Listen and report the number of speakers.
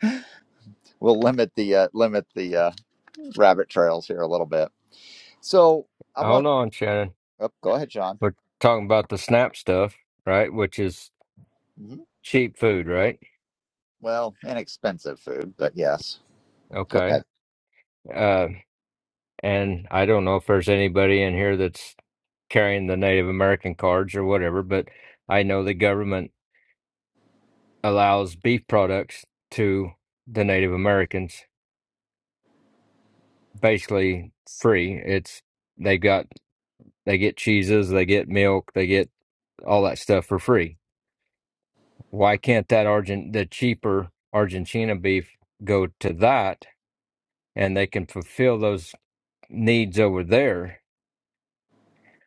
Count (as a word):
two